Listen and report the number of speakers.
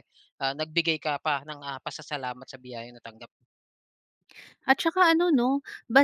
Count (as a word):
two